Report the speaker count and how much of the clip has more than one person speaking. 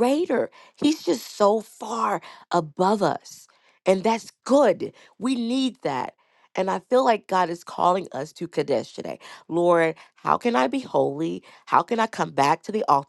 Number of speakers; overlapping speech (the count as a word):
one, no overlap